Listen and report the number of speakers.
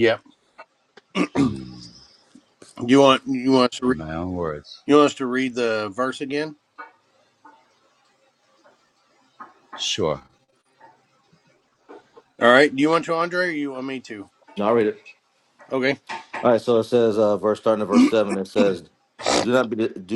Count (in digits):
3